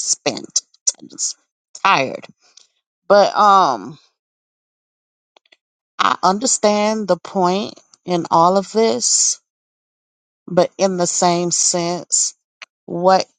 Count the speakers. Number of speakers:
one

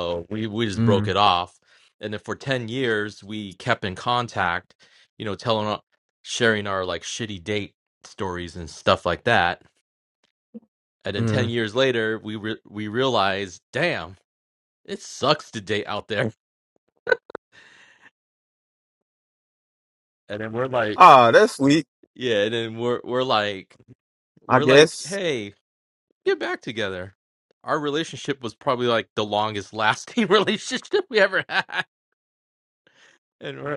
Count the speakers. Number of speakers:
two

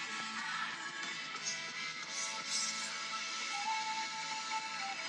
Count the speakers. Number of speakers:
zero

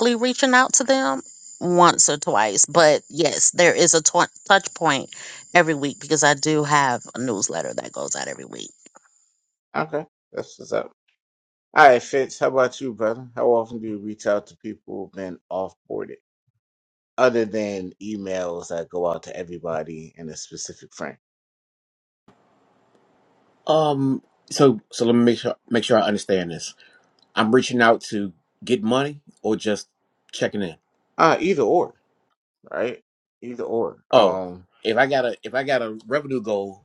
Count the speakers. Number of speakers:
three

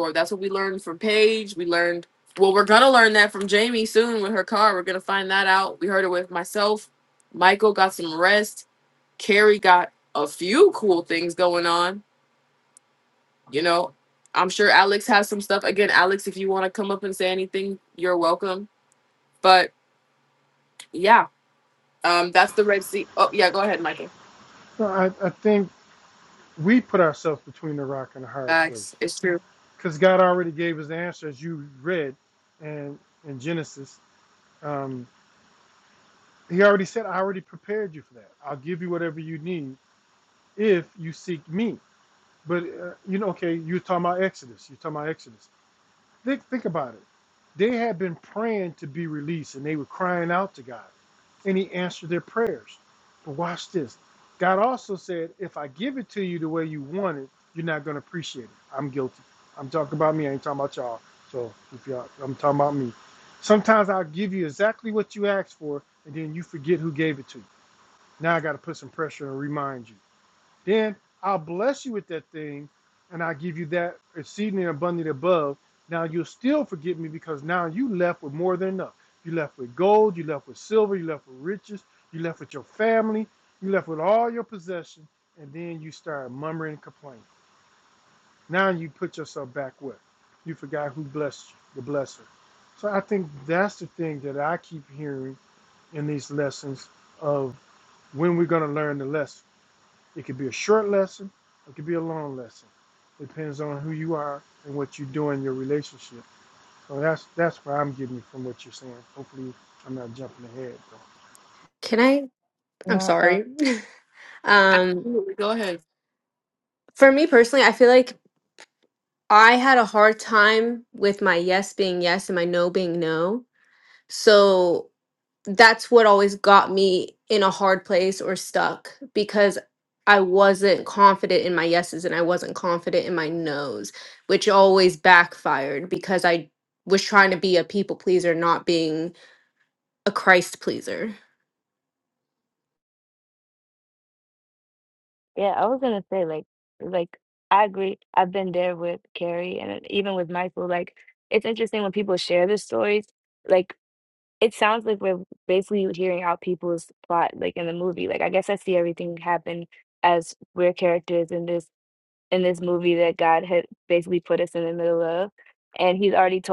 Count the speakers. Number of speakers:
four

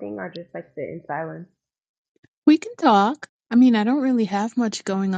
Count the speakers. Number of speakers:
two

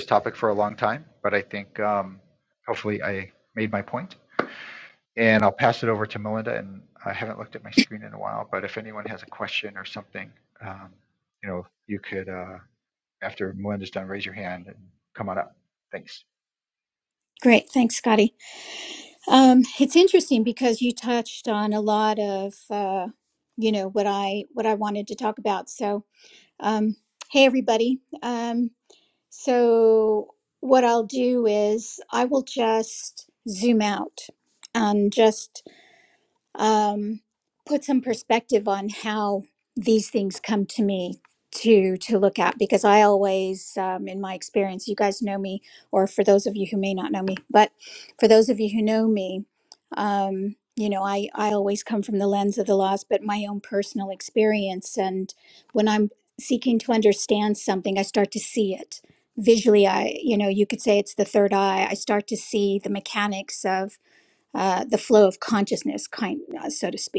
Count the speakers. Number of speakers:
two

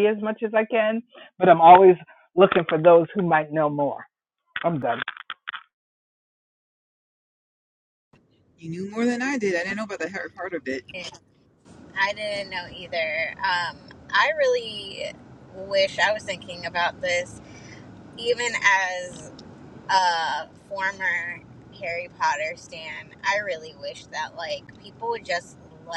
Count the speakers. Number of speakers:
three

